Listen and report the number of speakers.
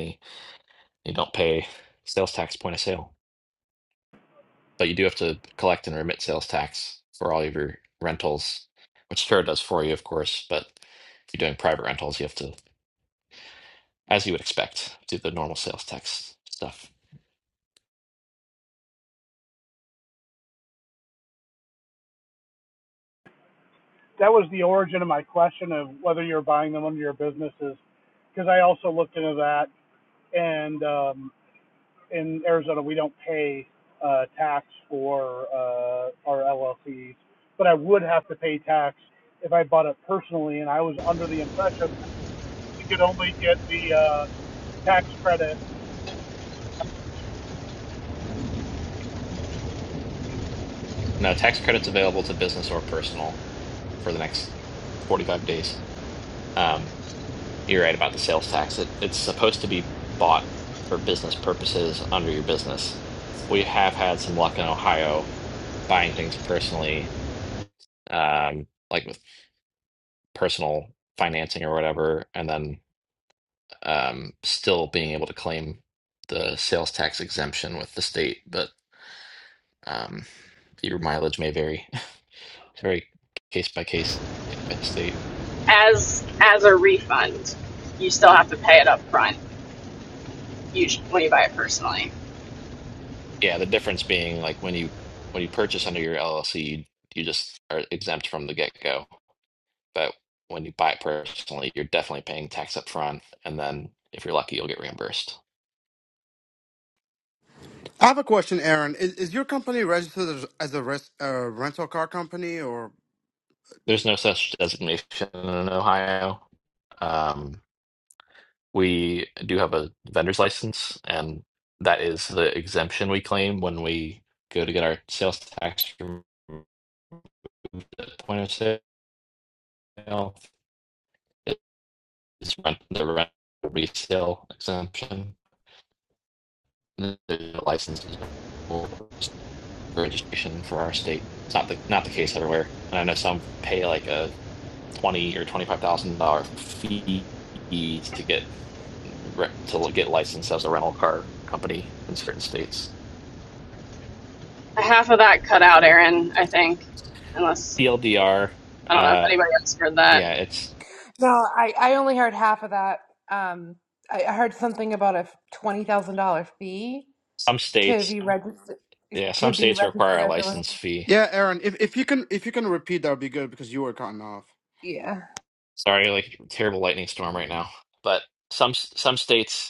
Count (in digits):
5